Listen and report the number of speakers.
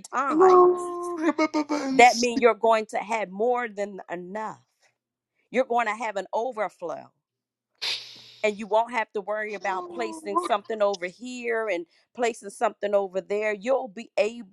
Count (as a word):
two